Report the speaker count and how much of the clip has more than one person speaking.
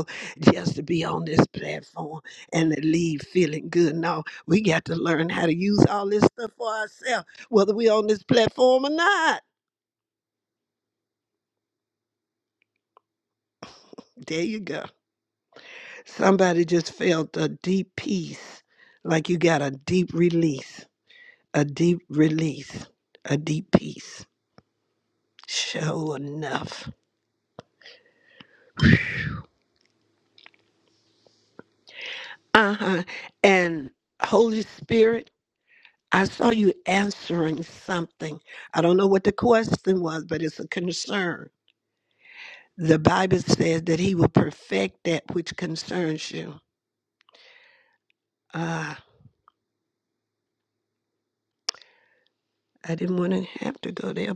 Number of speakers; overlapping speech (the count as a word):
one, no overlap